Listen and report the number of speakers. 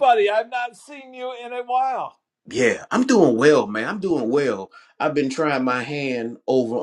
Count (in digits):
2